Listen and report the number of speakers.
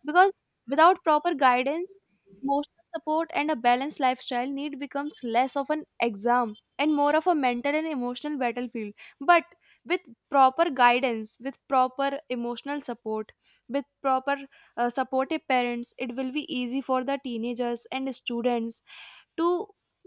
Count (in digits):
1